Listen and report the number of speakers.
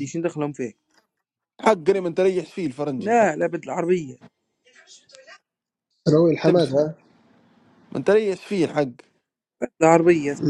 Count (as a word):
three